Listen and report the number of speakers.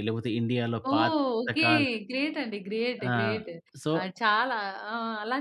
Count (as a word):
two